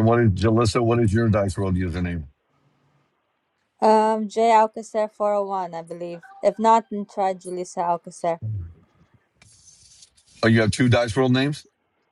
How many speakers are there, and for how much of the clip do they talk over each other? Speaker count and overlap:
2, no overlap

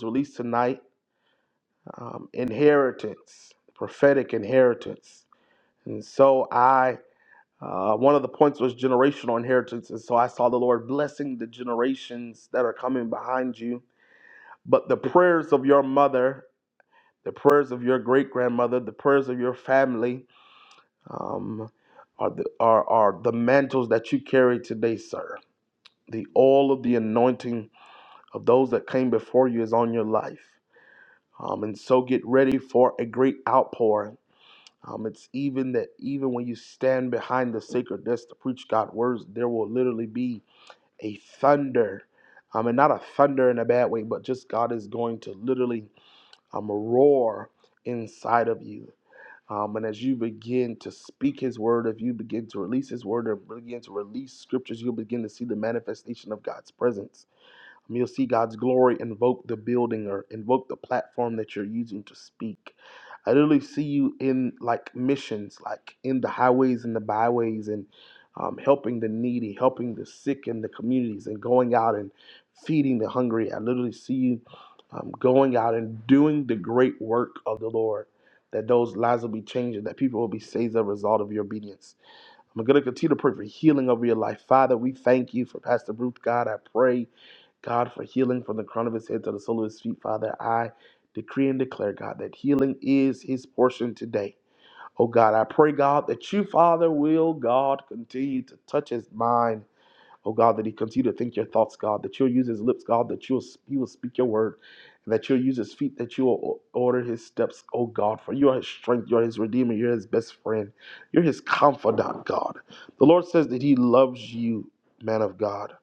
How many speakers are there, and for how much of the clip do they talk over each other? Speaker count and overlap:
1, no overlap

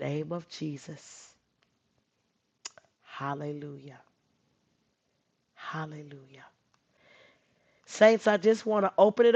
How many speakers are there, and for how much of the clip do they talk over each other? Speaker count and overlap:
1, no overlap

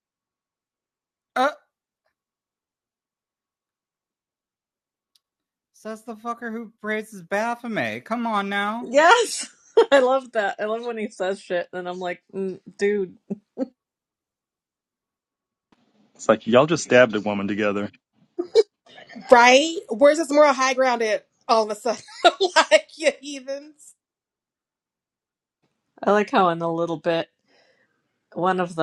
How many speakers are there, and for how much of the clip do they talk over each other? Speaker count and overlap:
4, under 1%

